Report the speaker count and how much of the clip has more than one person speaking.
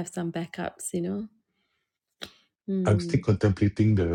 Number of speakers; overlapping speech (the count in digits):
2, about 9%